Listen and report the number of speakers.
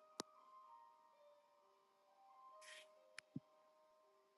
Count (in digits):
0